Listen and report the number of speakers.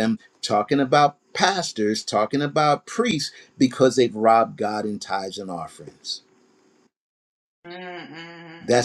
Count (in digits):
2